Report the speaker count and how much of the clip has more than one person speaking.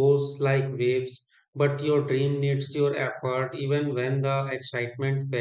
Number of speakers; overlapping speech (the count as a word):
one, no overlap